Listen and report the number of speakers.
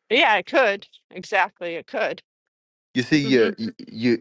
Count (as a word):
two